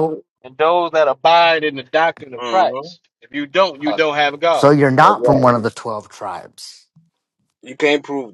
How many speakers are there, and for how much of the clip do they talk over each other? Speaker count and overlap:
3, about 11%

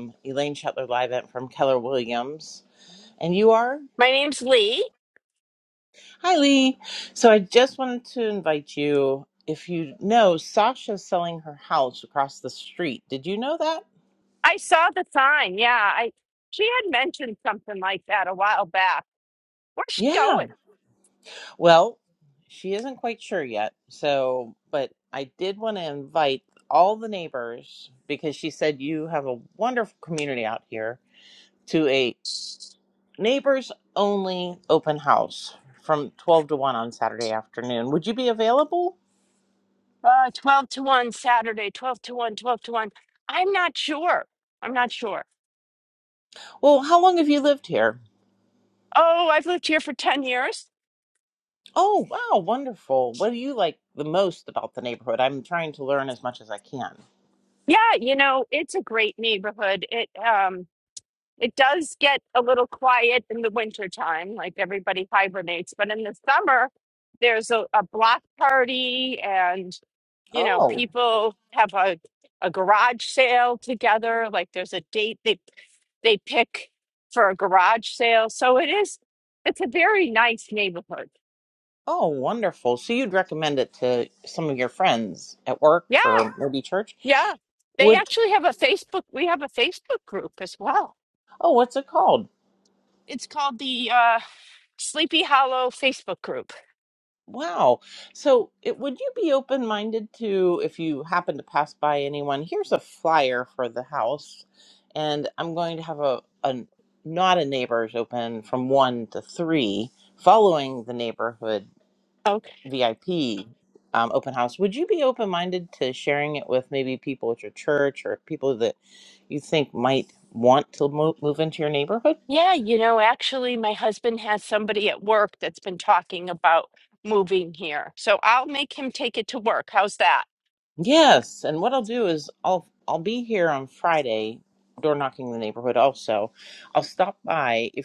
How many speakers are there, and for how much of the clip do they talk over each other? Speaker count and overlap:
2, about 1%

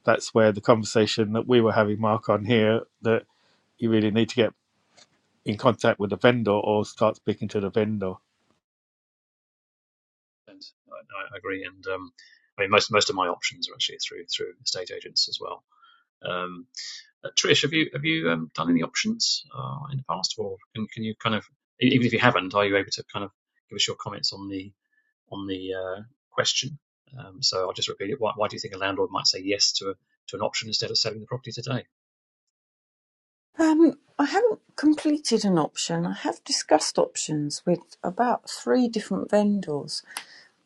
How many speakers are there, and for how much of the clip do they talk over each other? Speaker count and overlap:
3, no overlap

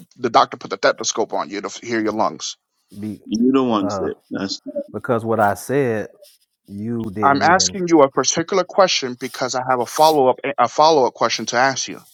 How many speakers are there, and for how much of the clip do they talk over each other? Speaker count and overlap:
3, about 7%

